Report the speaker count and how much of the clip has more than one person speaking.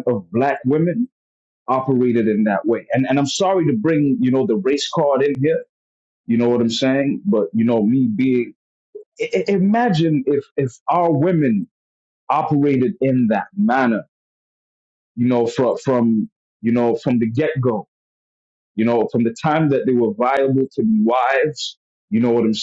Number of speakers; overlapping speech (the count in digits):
1, no overlap